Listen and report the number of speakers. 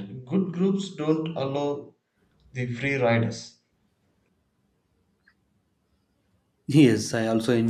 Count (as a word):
two